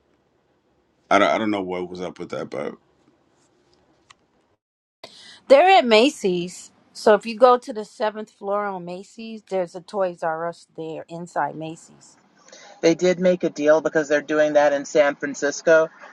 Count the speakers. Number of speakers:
three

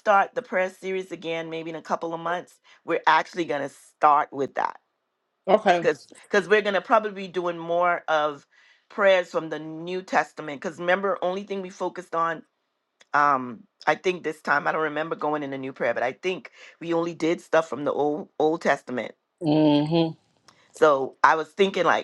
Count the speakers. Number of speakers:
two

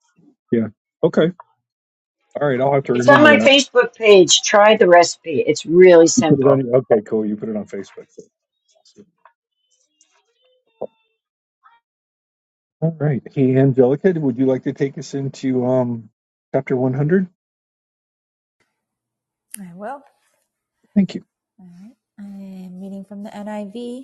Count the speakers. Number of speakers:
three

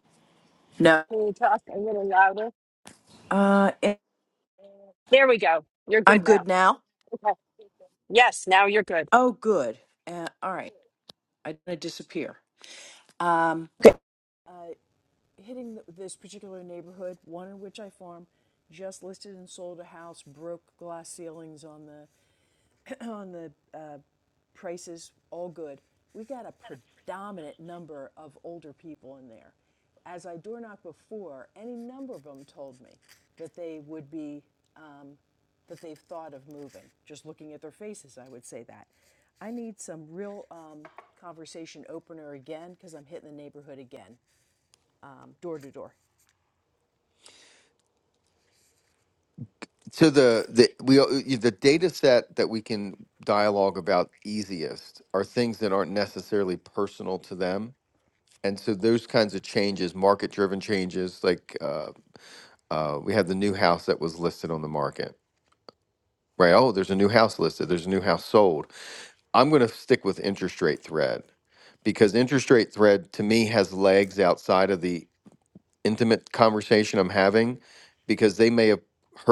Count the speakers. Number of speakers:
three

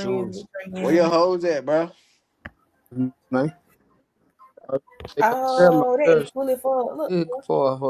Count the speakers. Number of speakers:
three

